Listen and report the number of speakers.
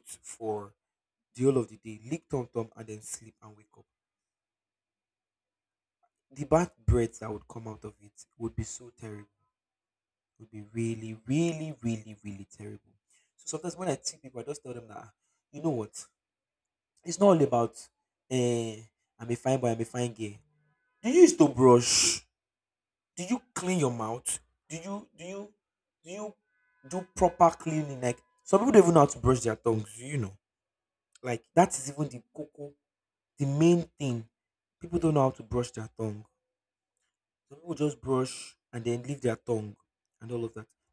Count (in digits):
1